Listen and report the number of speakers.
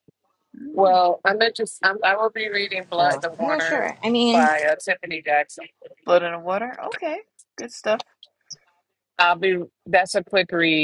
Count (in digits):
3